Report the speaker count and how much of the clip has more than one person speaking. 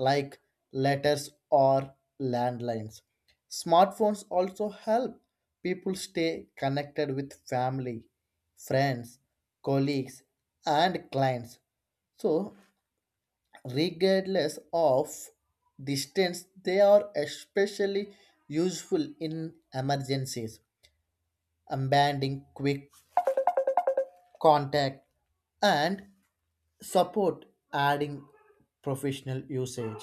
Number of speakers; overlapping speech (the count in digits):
1, no overlap